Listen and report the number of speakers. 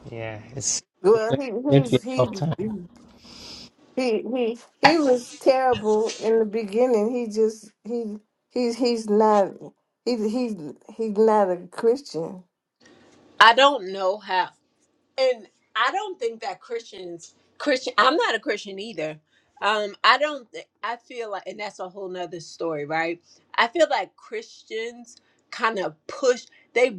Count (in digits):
3